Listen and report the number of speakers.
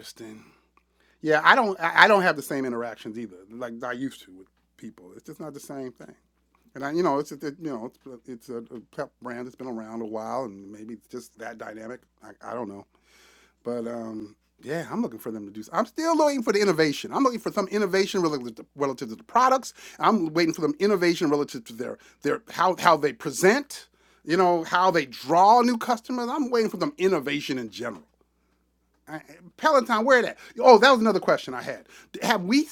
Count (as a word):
one